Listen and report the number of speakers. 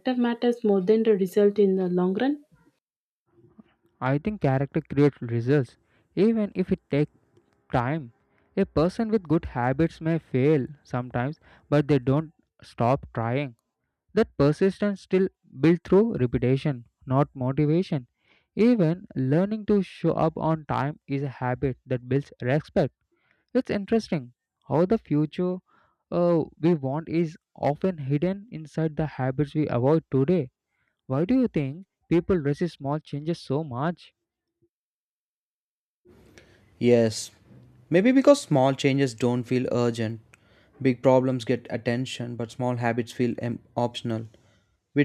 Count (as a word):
three